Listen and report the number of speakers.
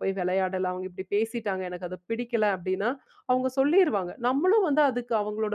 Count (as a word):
one